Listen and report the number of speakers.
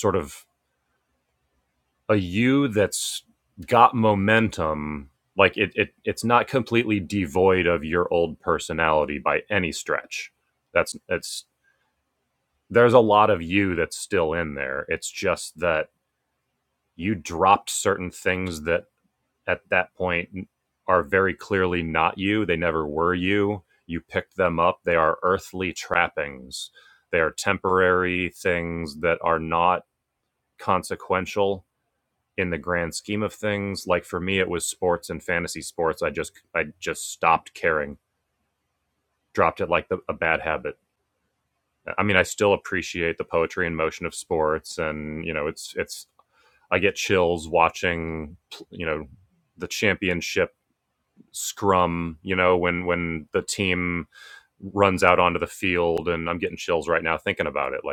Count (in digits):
1